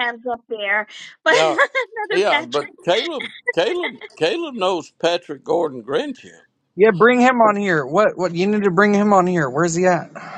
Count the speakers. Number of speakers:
three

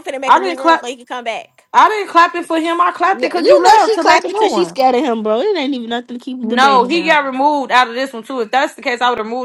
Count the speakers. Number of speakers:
three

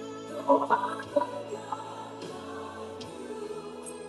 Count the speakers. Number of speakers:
zero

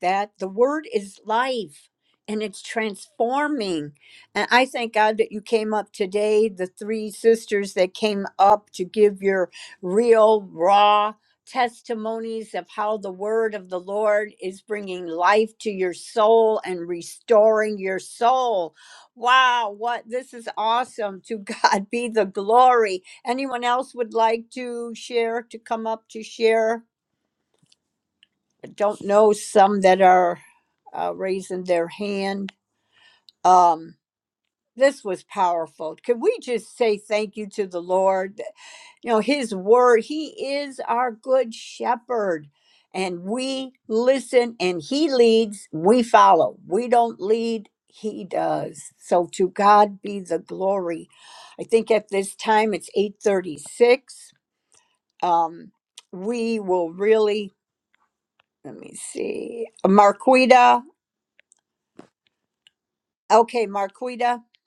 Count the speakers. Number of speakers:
one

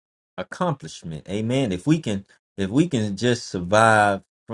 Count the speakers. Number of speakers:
one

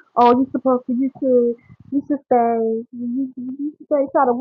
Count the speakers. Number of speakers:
one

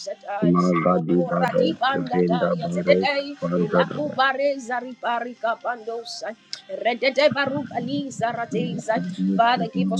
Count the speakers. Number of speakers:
two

